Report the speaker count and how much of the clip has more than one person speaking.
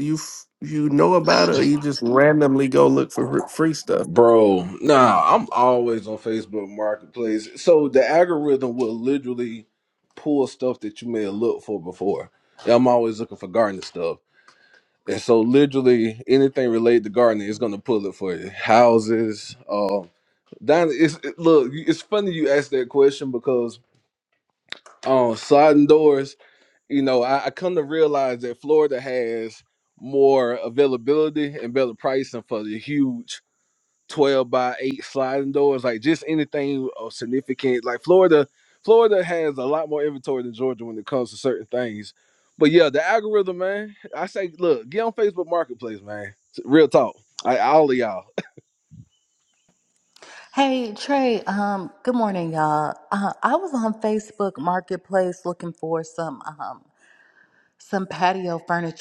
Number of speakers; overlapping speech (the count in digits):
3, under 1%